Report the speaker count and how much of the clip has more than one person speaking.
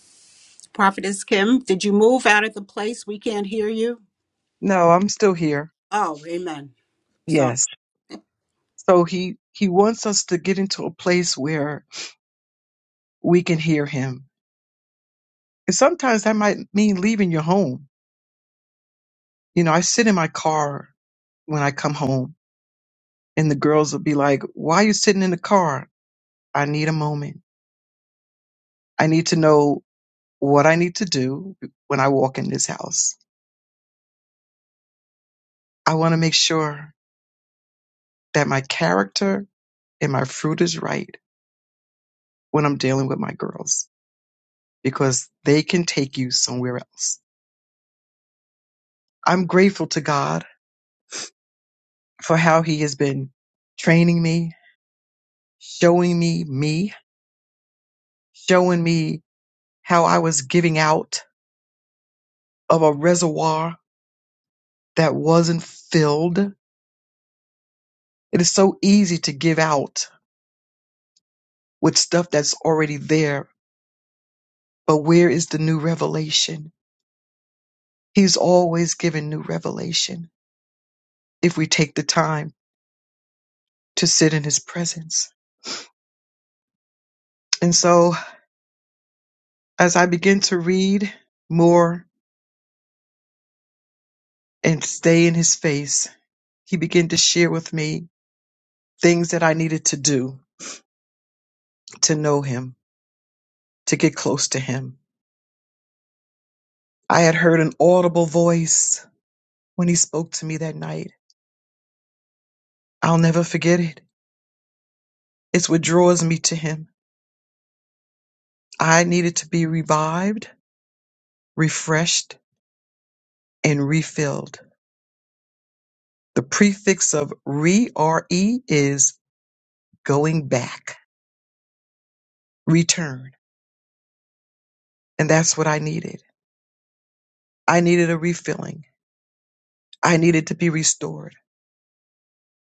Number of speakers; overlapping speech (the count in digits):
2, no overlap